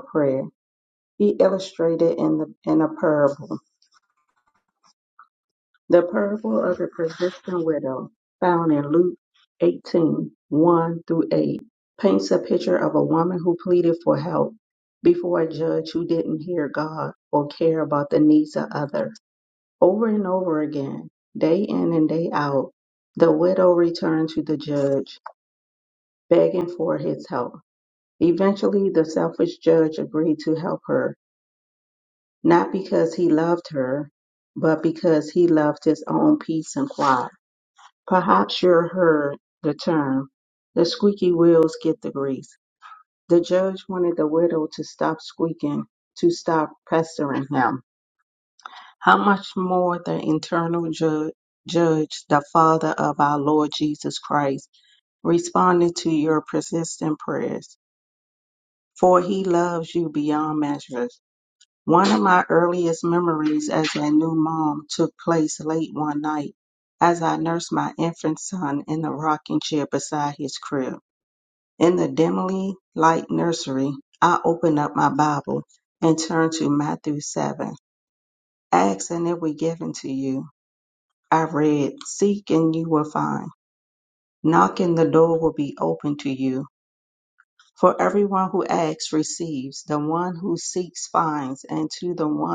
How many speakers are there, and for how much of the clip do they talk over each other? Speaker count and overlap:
one, no overlap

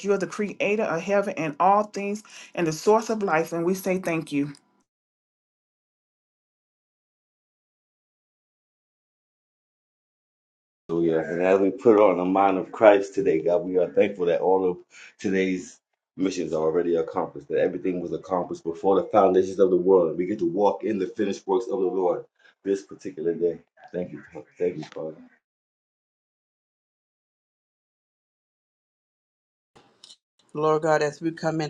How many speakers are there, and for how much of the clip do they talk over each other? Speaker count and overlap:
three, no overlap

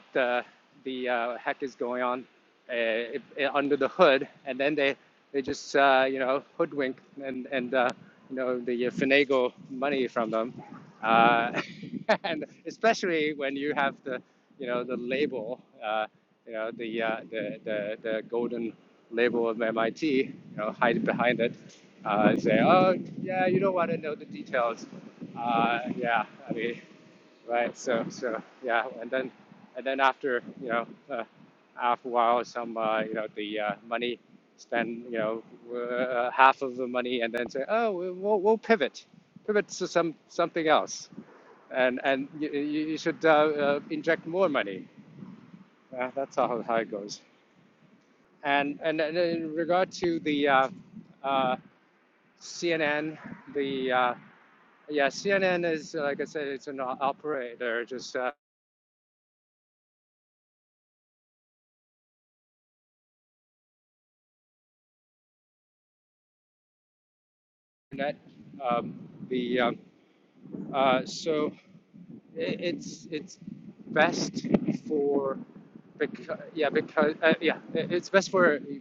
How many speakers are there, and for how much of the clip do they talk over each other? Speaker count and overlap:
one, no overlap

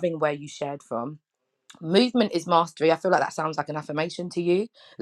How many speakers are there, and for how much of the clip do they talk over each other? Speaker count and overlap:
one, no overlap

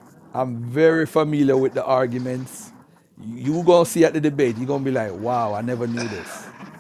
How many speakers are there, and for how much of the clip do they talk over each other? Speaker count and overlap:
one, no overlap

